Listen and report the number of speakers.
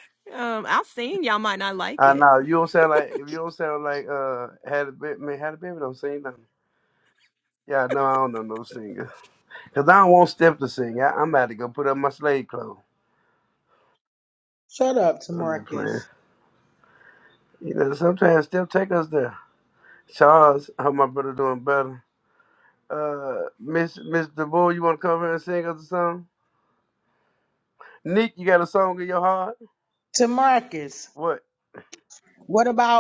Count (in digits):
3